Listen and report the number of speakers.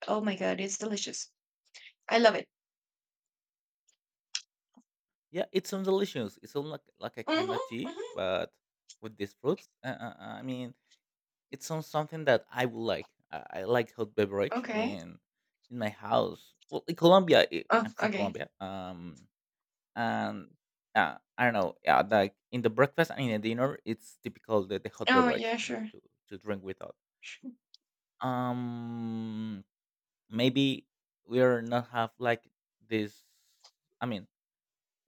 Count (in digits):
2